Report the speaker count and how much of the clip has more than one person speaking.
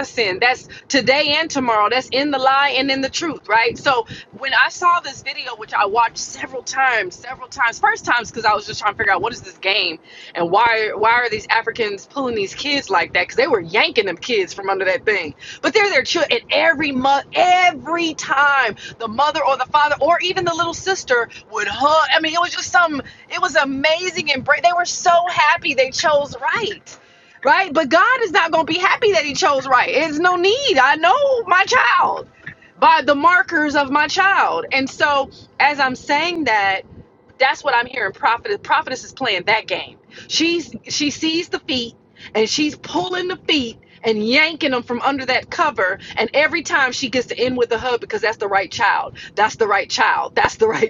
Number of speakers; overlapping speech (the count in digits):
1, no overlap